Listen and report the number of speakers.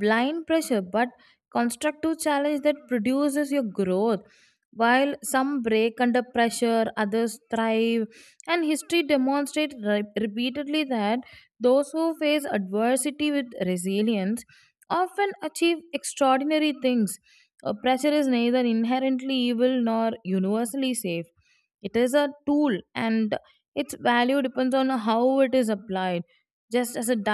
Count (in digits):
1